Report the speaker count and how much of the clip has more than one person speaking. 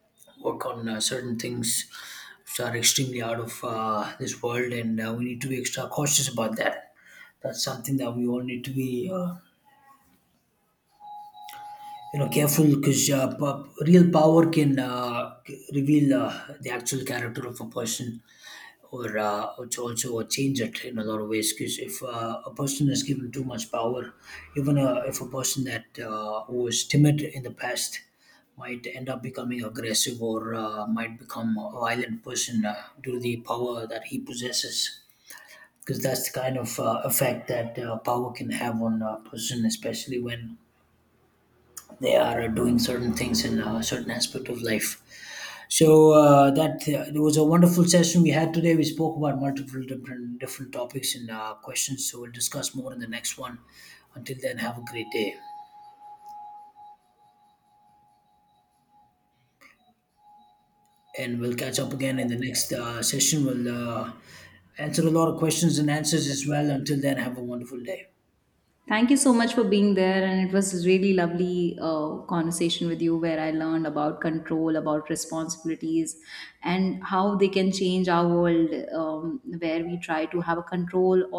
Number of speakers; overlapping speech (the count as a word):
two, no overlap